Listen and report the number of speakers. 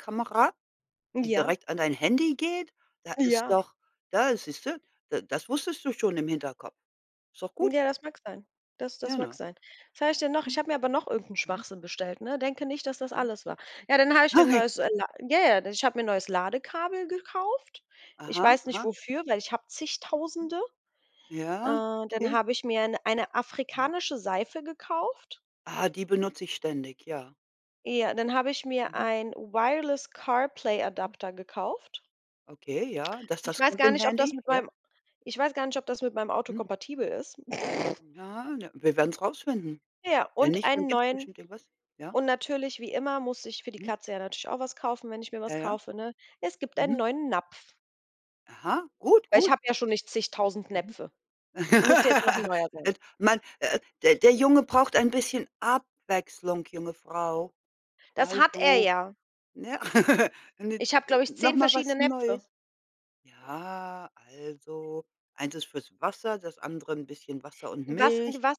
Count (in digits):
2